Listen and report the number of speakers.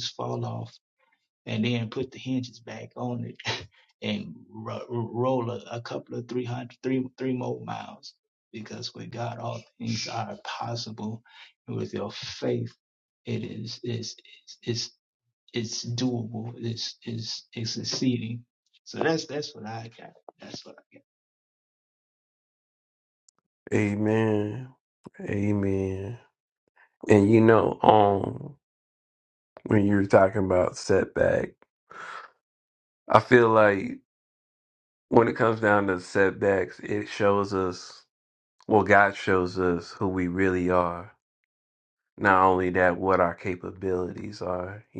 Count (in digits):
2